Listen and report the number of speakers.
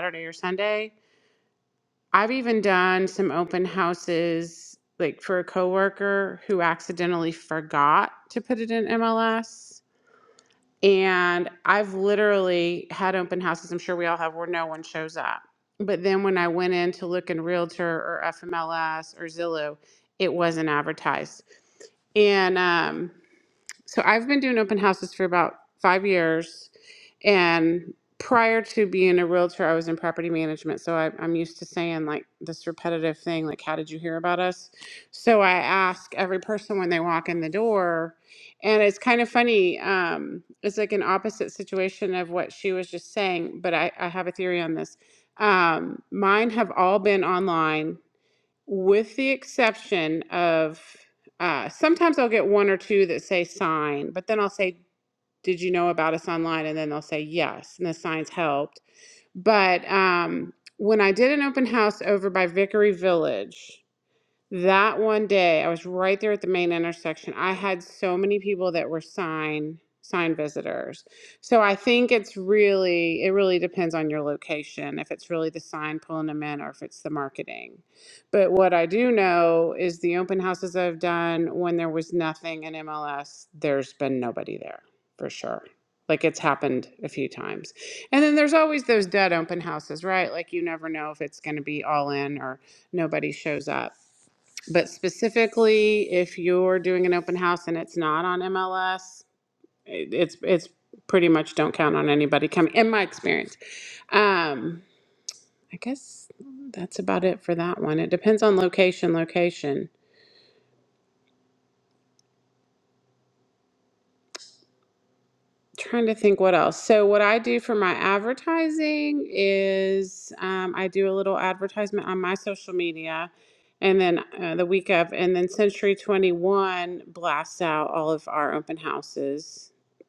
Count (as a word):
one